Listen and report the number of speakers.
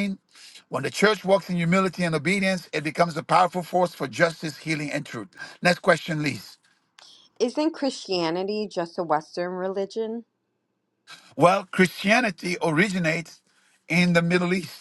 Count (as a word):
two